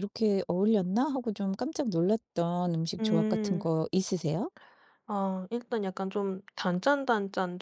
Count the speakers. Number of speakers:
two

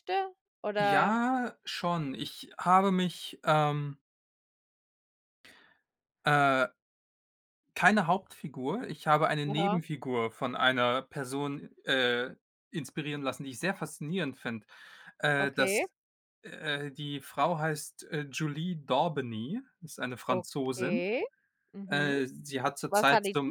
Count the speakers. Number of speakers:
two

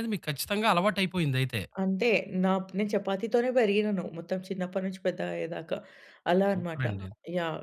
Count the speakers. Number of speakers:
two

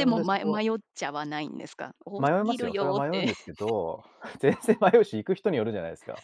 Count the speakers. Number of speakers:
two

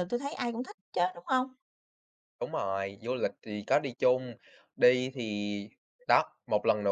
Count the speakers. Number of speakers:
two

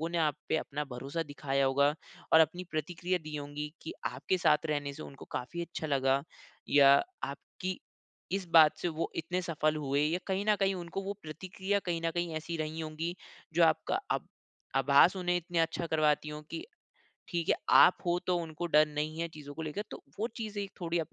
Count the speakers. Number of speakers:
one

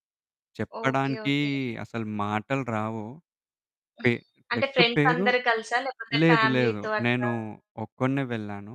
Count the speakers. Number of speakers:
two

